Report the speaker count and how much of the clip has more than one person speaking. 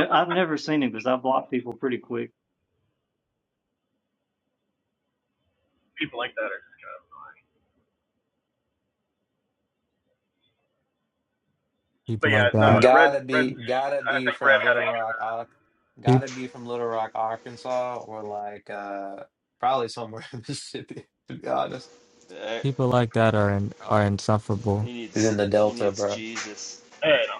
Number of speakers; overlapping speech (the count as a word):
five, about 15%